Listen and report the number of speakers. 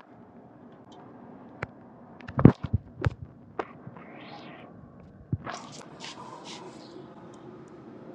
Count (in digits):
0